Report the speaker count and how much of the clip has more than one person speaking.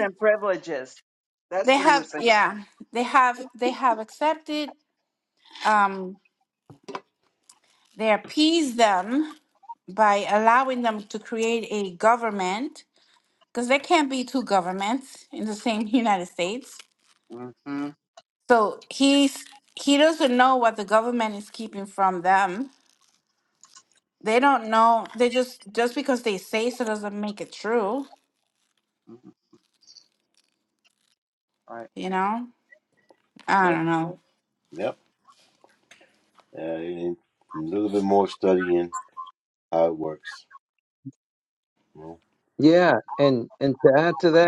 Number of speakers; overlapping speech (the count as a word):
four, about 2%